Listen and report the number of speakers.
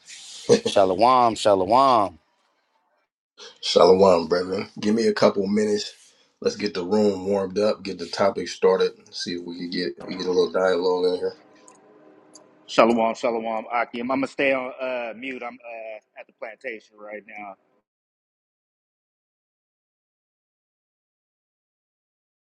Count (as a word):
three